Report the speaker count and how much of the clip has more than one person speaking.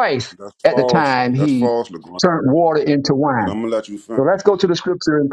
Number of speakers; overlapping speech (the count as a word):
two, about 28%